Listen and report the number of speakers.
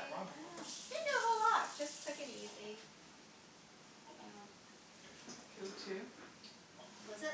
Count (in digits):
2